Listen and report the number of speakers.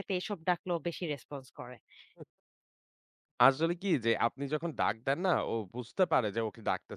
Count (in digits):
2